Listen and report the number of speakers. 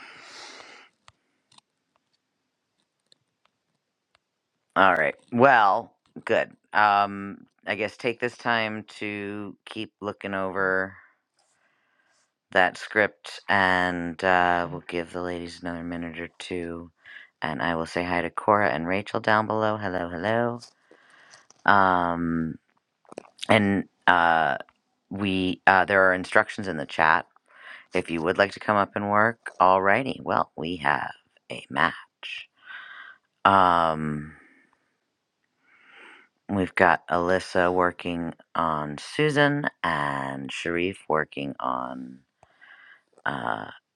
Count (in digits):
1